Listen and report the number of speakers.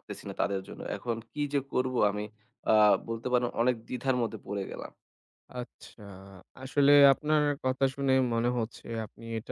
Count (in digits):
2